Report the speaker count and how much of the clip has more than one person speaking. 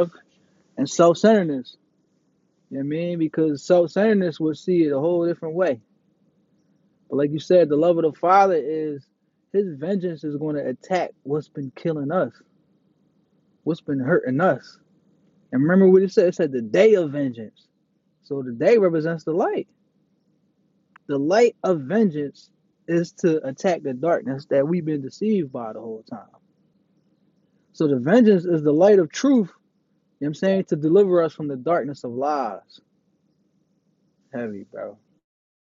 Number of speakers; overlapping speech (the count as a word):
one, no overlap